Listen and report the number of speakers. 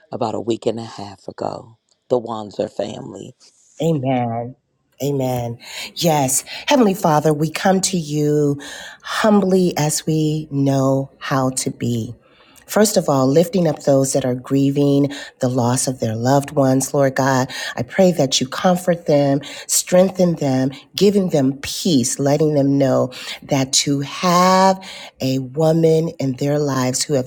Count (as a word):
two